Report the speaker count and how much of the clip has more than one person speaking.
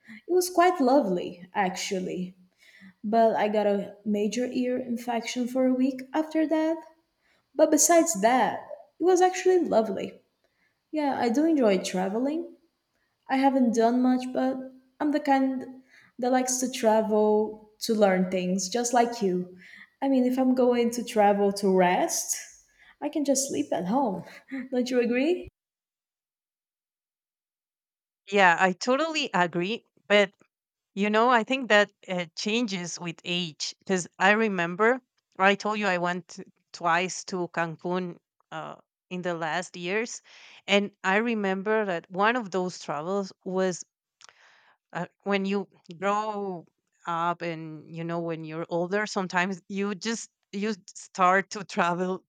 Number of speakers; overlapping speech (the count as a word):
two, no overlap